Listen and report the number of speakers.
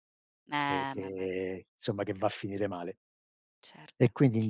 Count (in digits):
2